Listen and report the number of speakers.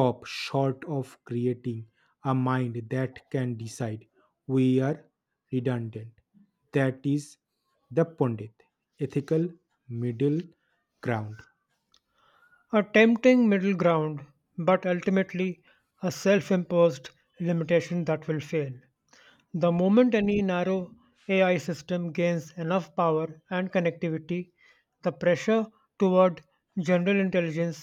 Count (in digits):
2